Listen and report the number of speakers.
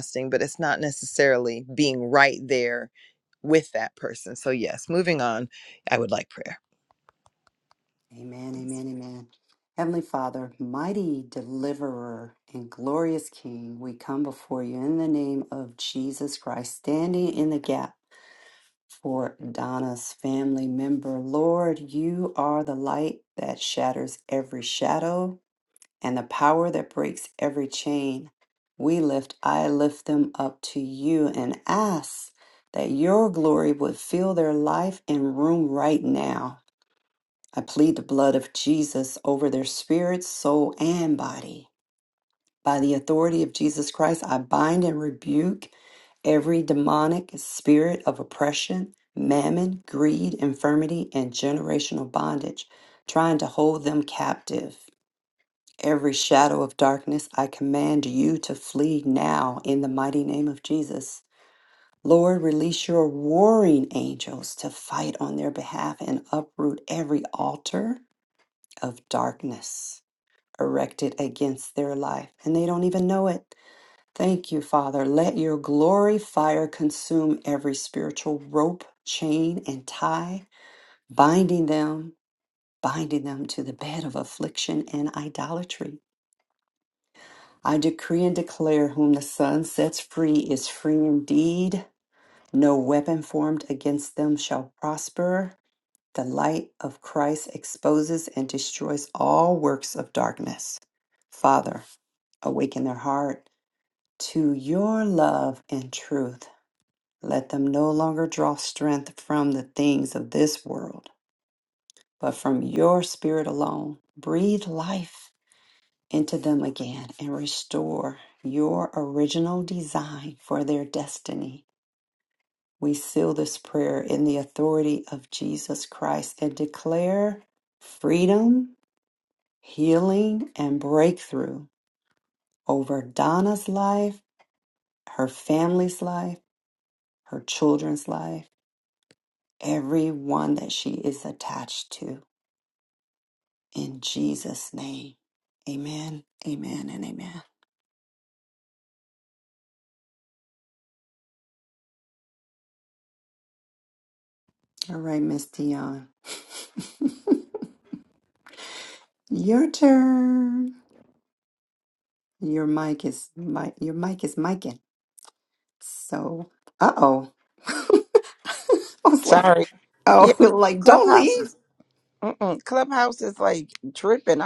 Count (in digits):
3